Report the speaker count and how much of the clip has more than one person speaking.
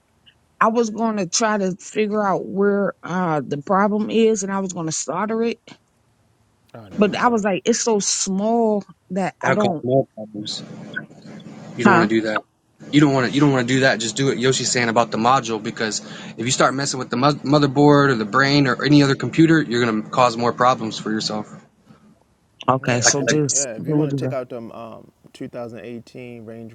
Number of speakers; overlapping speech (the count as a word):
three, about 10%